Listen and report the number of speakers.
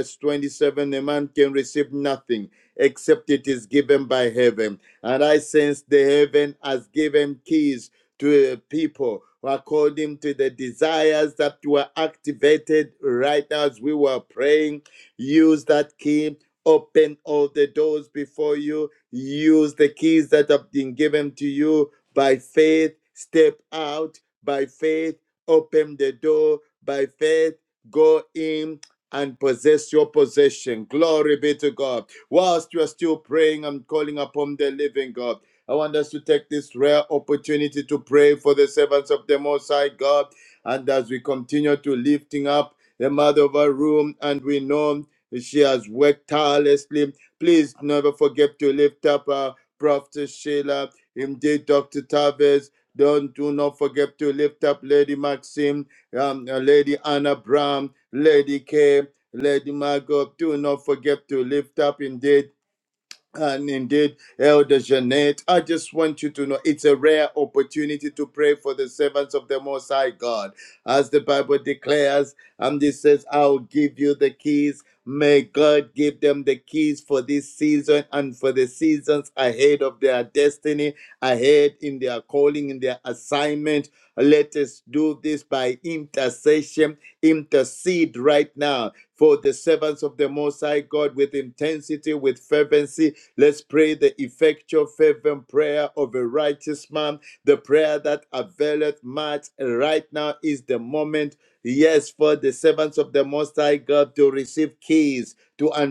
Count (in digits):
1